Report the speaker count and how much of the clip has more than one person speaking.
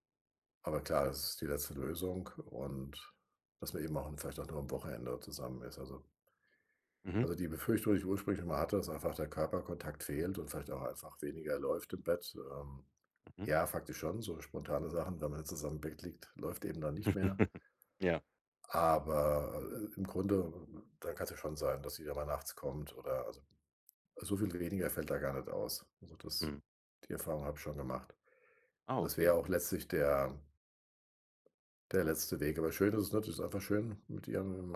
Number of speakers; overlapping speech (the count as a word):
two, about 1%